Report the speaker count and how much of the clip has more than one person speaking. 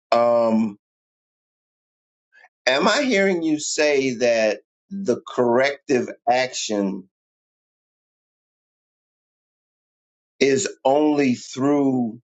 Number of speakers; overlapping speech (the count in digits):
1, no overlap